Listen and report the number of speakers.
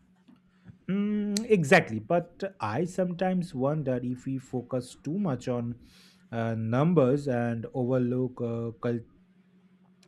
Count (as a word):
one